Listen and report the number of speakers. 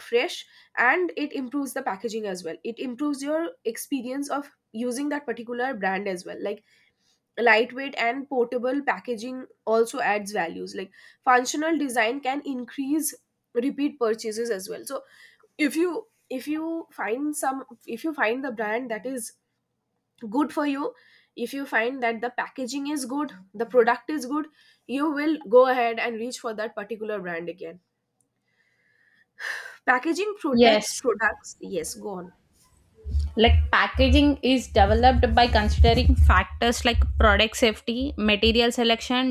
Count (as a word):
two